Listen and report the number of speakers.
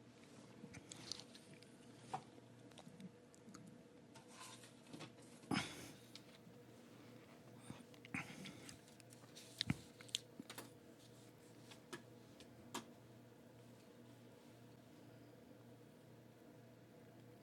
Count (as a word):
zero